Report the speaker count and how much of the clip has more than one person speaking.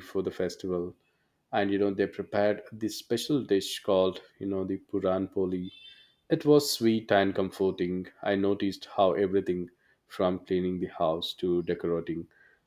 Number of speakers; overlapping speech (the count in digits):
1, no overlap